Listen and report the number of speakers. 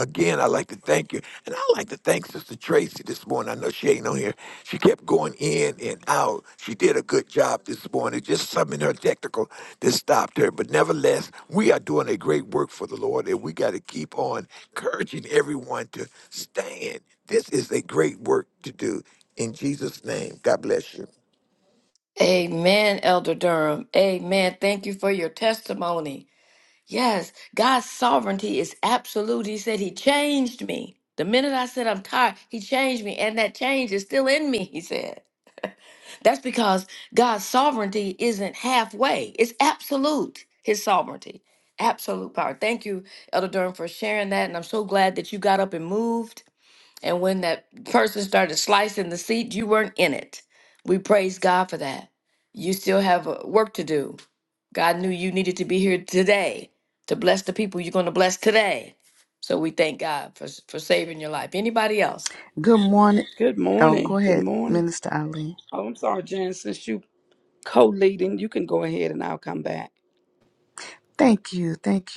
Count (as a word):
four